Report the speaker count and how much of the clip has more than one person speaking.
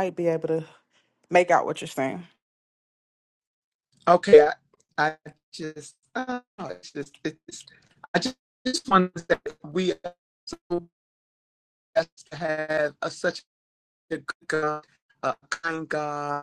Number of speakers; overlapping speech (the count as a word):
two, no overlap